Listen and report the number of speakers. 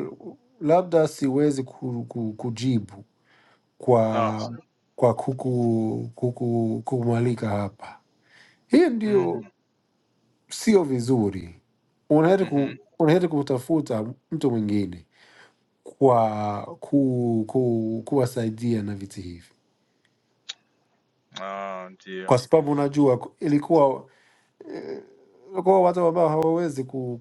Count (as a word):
two